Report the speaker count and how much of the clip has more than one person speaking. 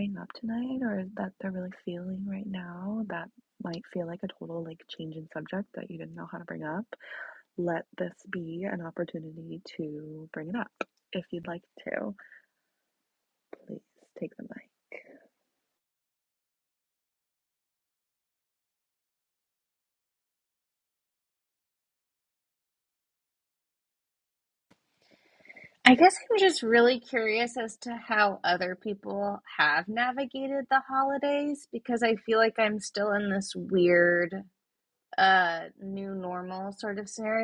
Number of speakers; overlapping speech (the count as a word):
two, no overlap